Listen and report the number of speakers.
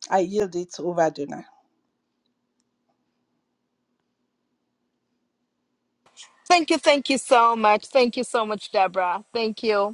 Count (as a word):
two